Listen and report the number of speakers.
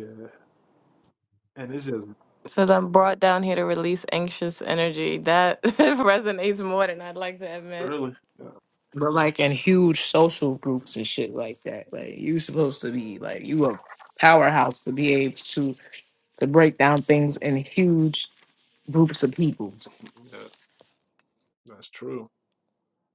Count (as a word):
three